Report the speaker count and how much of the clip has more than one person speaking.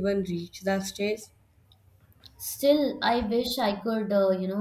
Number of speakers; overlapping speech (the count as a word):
two, no overlap